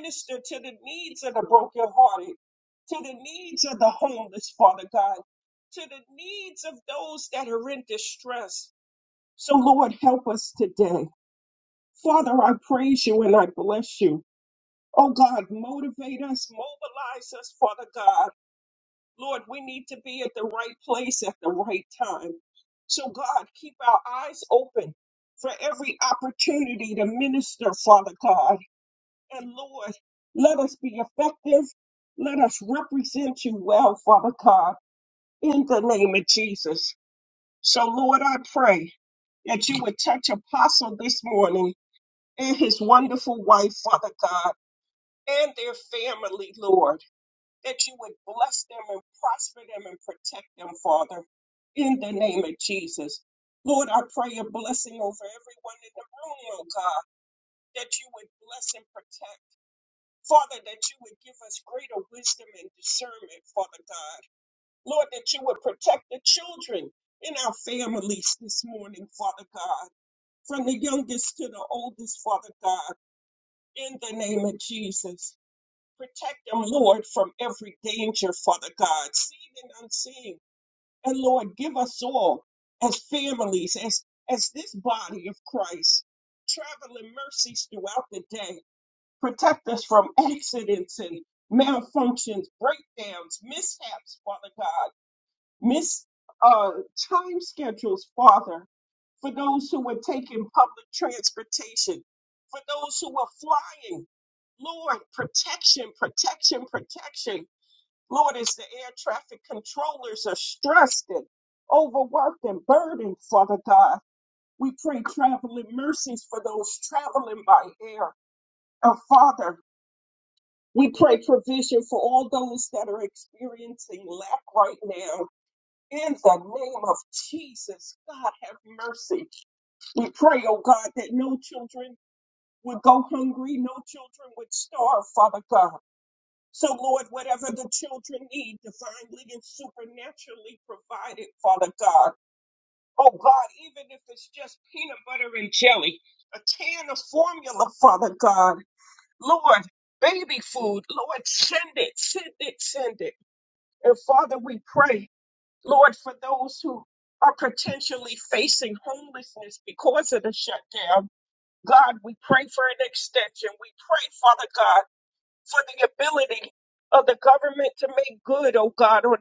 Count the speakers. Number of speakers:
one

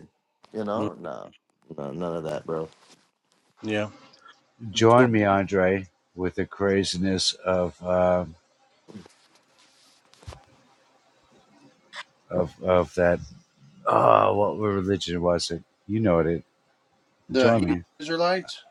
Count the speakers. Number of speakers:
three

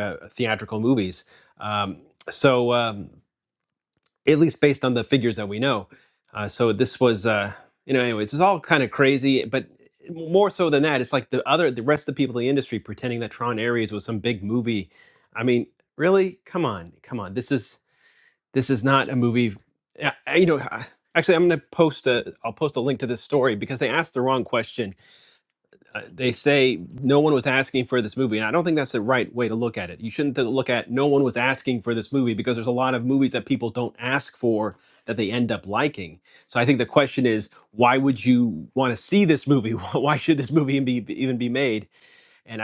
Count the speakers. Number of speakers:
one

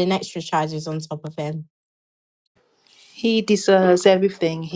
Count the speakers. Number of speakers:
two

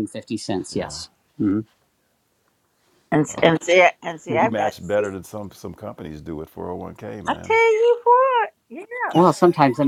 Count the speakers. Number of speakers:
three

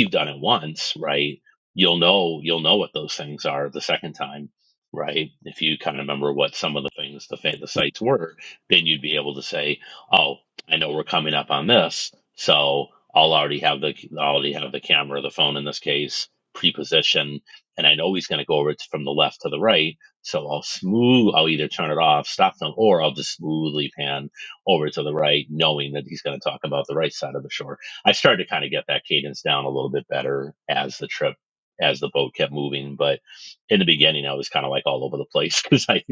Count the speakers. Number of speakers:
one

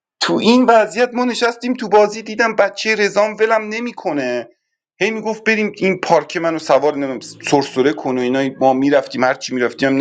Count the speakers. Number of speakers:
one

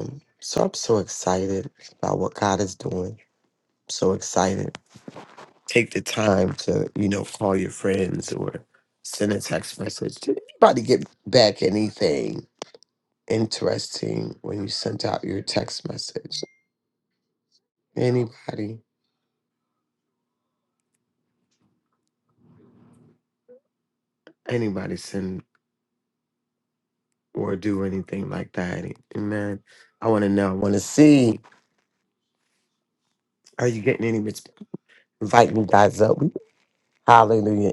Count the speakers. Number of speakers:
one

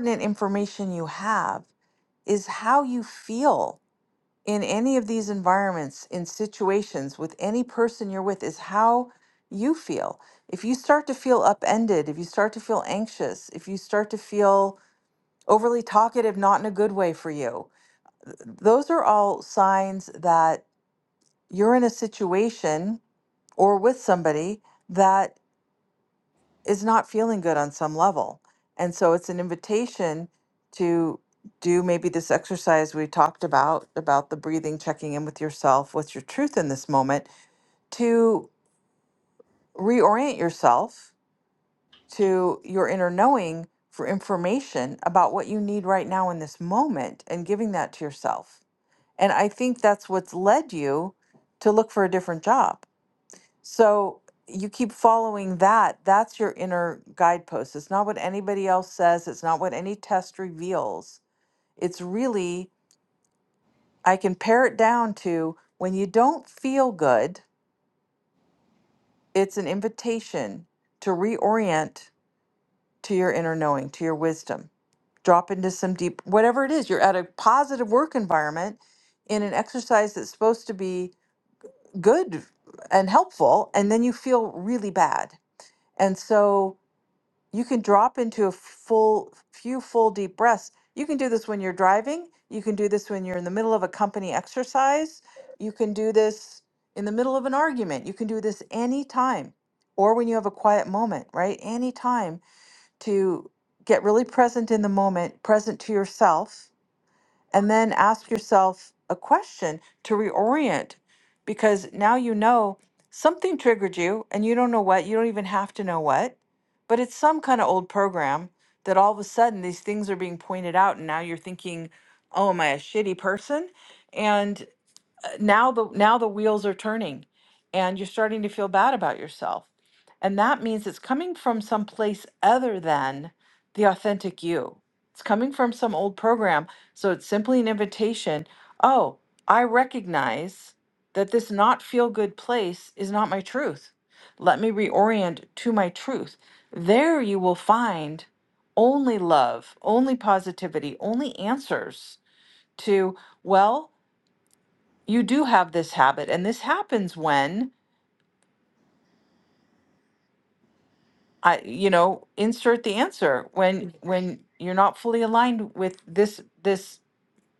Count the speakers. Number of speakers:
one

